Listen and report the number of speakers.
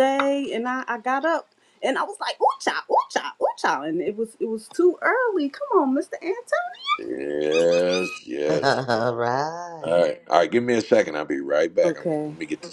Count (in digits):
3